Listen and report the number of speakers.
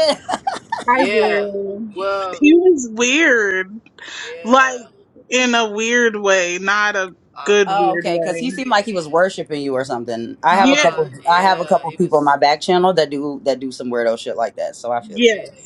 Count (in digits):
3